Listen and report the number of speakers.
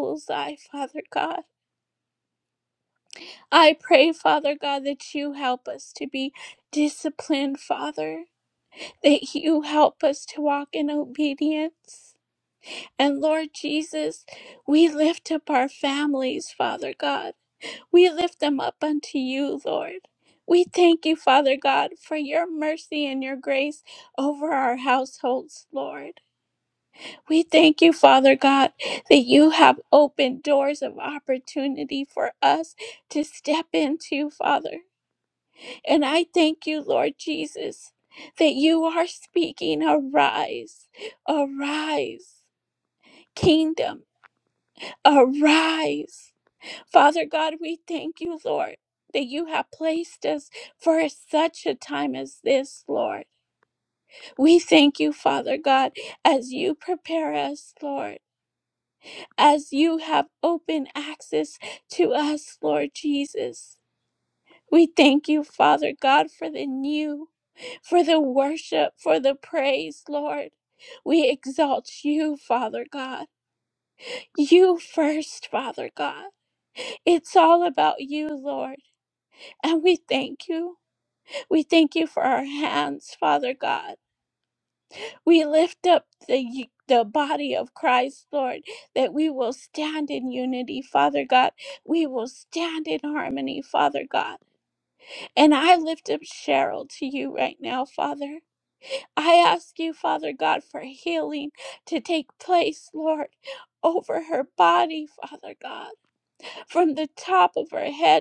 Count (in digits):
1